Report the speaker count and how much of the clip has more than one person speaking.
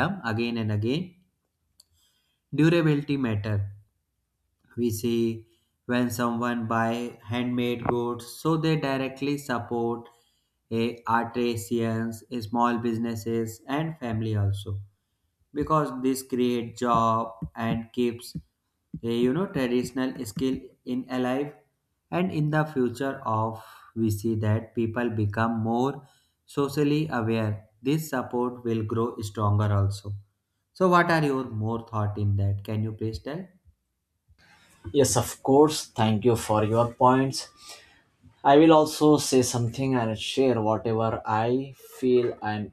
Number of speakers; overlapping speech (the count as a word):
two, no overlap